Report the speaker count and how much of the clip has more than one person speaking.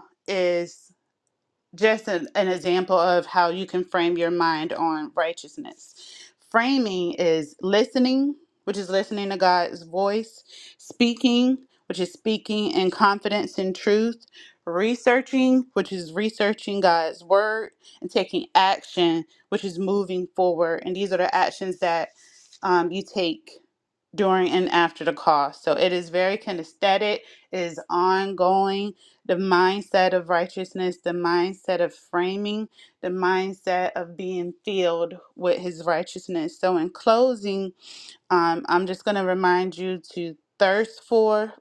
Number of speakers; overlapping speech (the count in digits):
1, no overlap